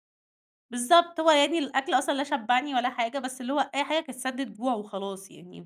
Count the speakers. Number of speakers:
1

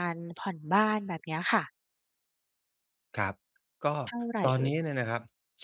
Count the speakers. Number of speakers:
2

